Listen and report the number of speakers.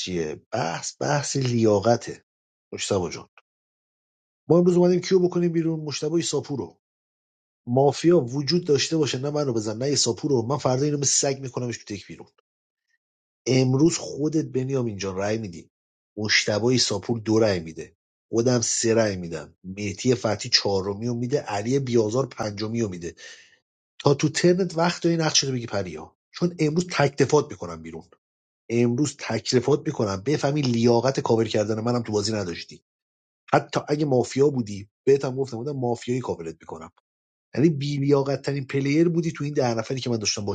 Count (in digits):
1